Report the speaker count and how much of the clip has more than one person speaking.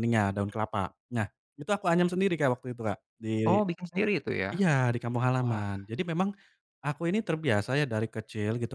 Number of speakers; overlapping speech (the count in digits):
2, about 6%